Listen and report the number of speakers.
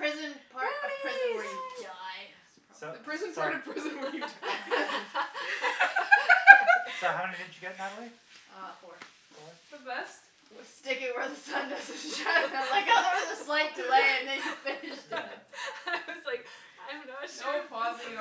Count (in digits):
4